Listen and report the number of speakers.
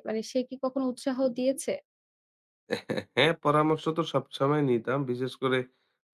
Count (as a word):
two